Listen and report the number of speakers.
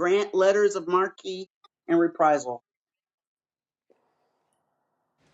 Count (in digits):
1